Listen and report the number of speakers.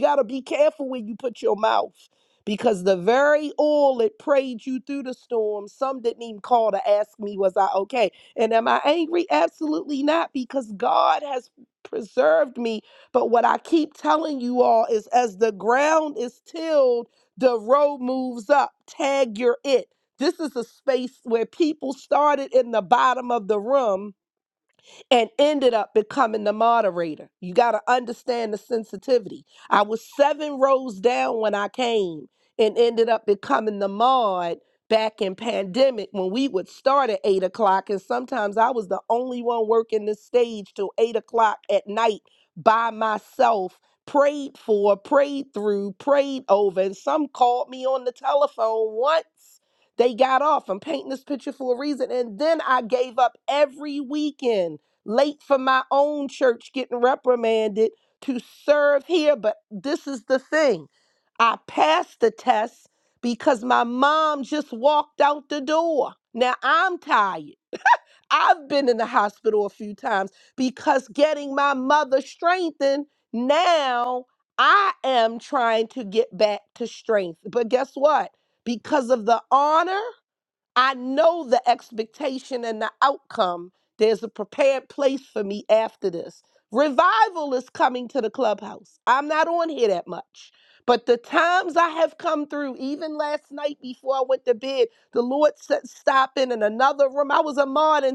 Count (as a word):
one